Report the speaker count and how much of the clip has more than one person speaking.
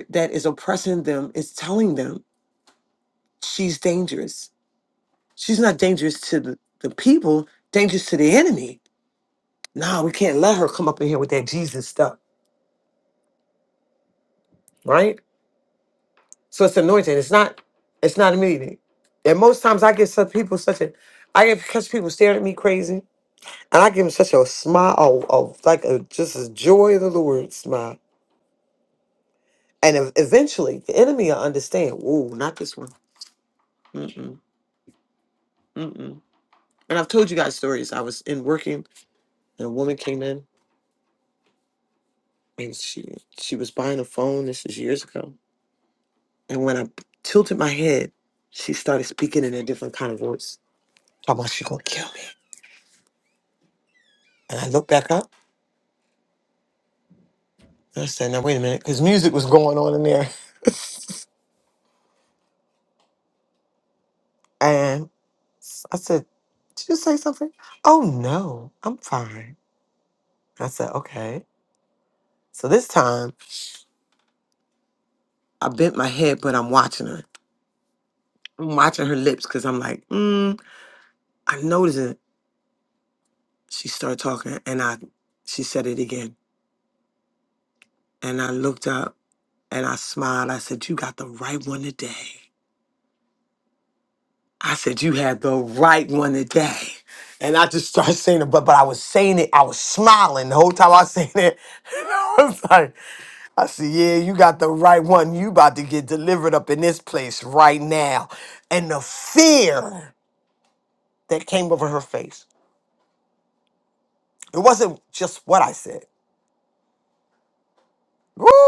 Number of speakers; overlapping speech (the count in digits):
1, no overlap